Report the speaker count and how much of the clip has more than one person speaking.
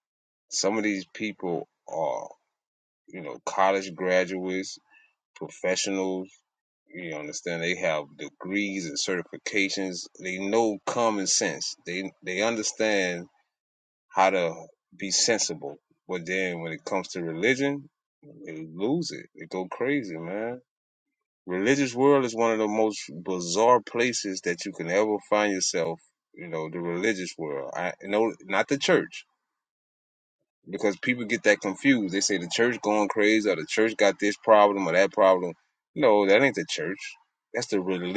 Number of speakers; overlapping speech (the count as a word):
one, no overlap